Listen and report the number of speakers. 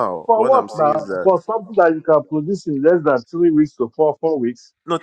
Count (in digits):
2